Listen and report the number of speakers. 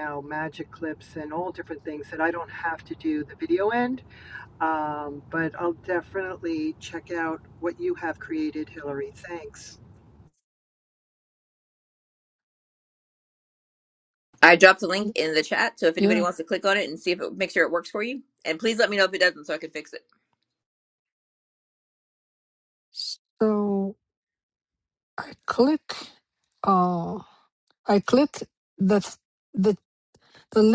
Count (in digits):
3